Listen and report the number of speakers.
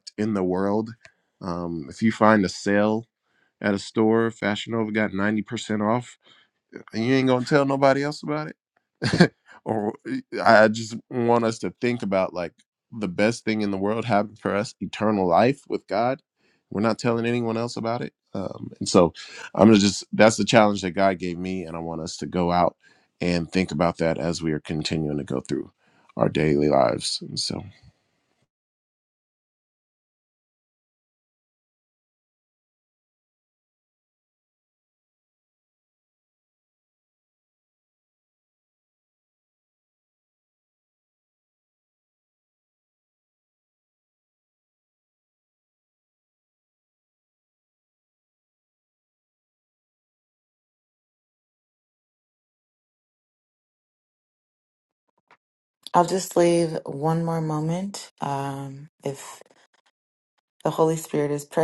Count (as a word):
two